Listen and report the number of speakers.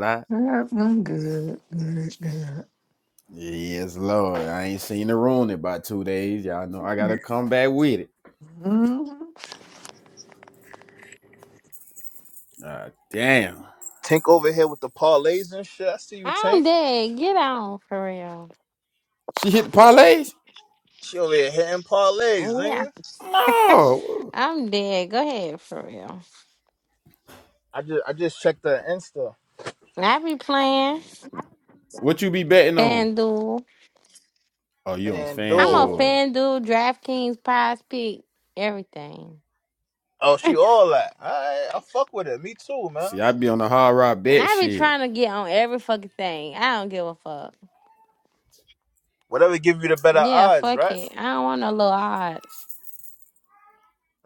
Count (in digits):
4